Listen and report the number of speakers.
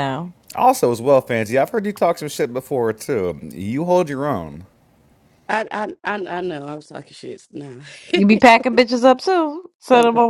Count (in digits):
3